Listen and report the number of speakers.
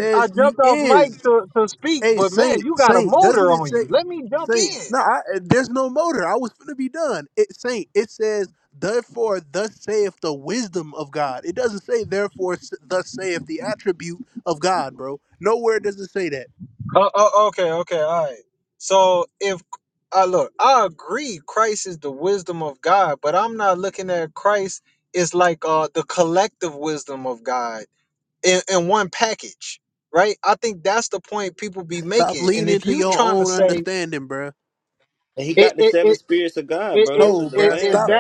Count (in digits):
3